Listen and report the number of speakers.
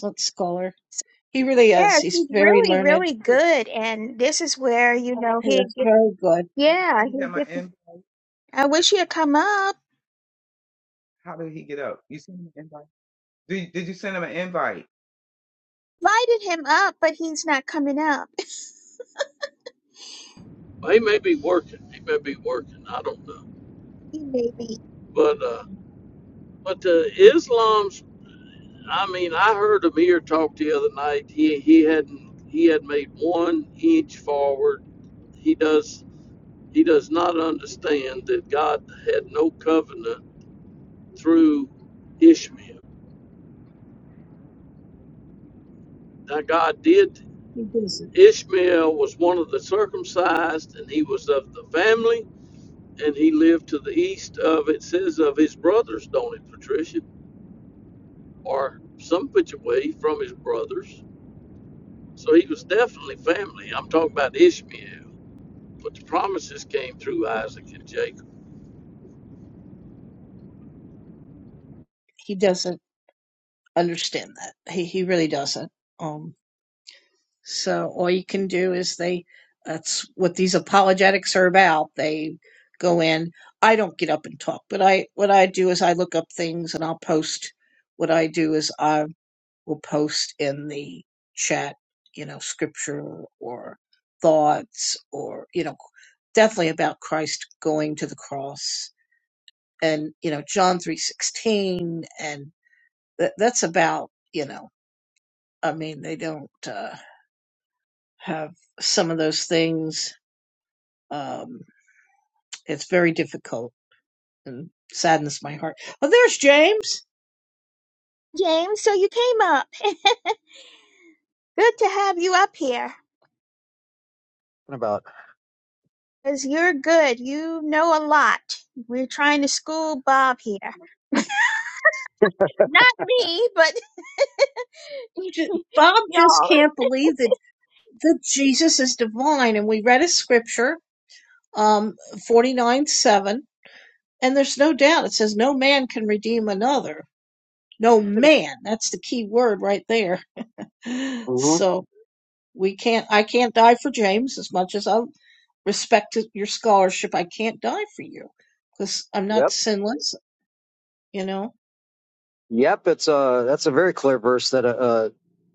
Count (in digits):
5